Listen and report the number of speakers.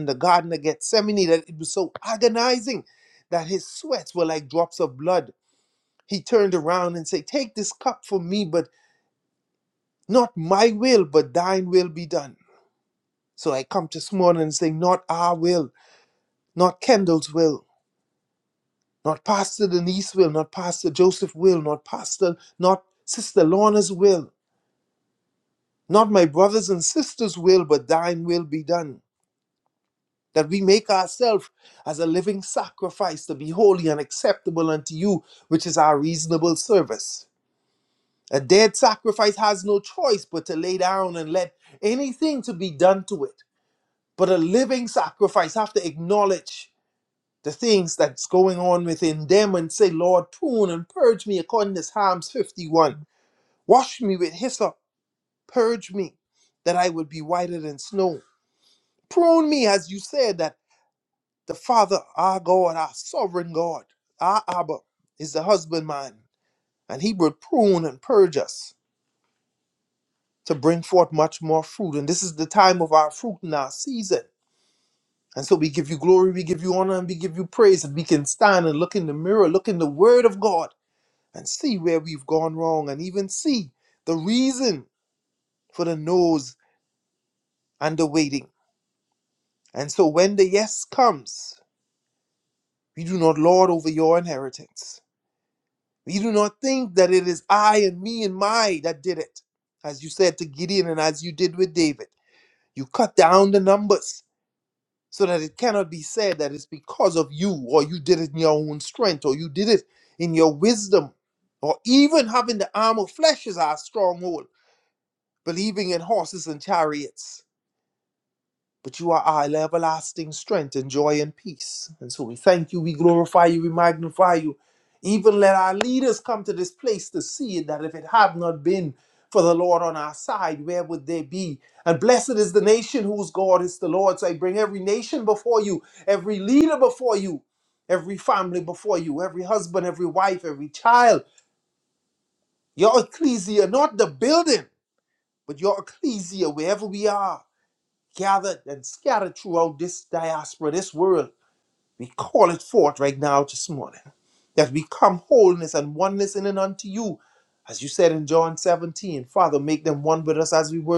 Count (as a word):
one